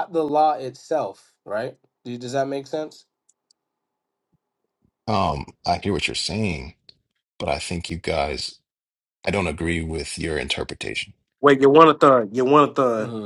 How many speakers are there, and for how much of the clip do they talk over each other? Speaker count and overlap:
3, about 1%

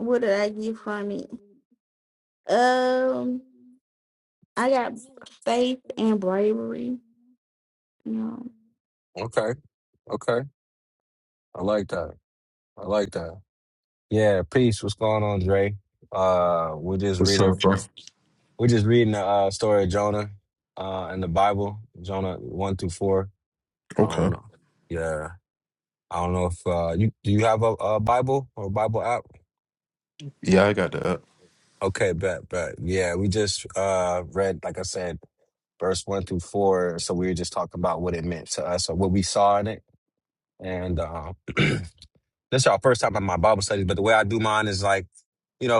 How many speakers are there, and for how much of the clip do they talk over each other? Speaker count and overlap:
3, about 2%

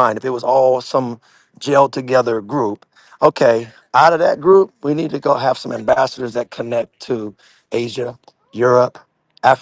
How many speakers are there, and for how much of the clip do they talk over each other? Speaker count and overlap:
1, no overlap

